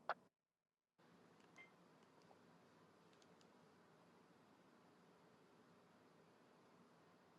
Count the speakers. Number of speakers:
zero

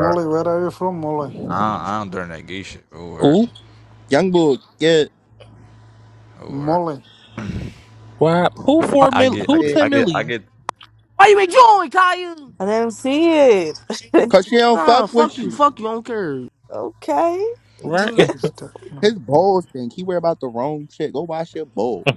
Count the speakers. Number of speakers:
six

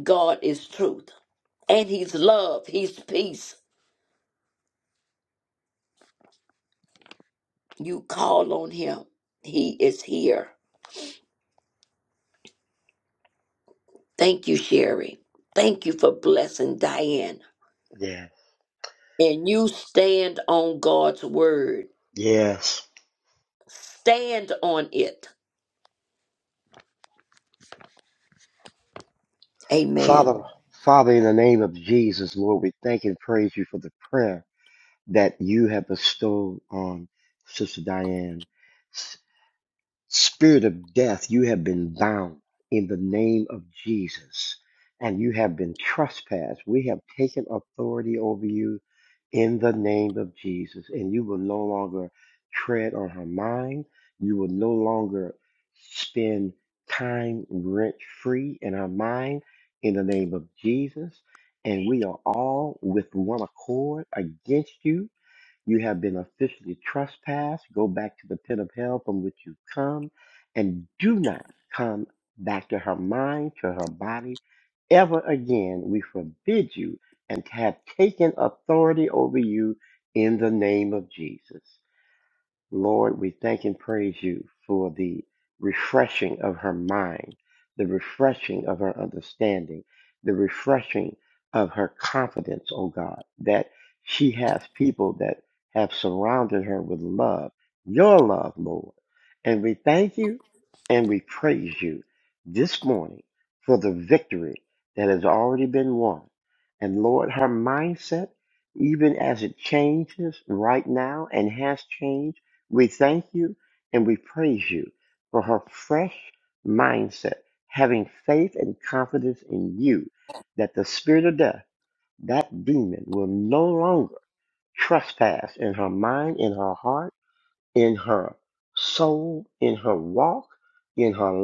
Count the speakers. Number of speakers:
two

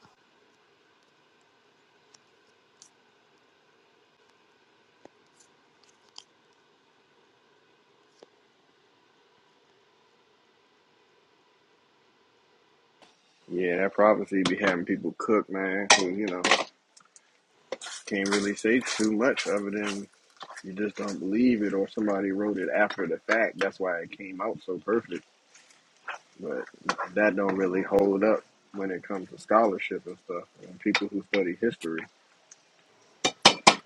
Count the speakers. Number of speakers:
one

